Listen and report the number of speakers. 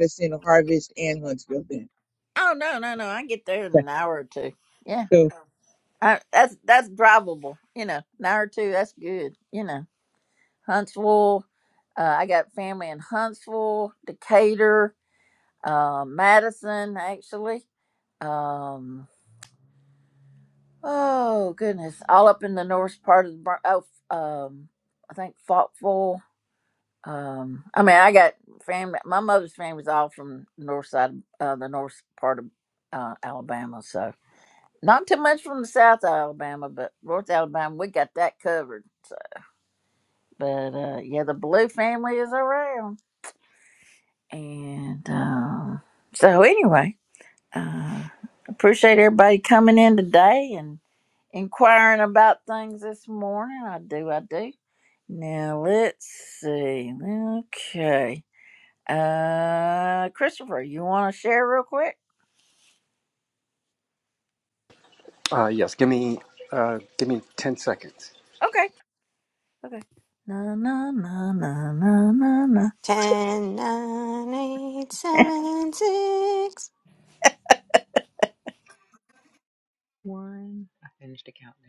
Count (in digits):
5